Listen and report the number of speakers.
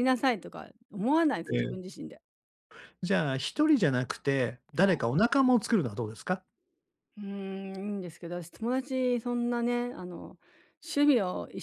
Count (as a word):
two